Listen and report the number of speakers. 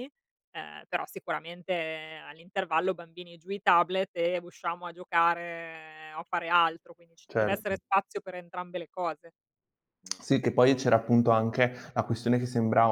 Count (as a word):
two